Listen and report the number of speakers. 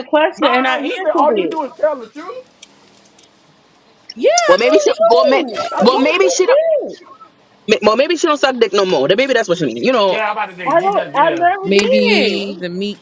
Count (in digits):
4